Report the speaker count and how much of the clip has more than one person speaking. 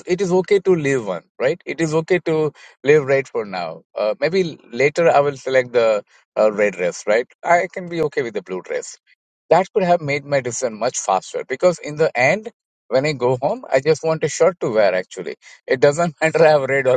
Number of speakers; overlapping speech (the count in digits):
1, no overlap